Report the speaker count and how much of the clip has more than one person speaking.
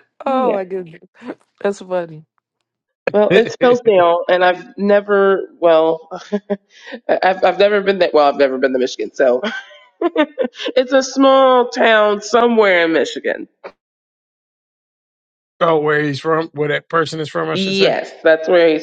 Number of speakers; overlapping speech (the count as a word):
three, about 4%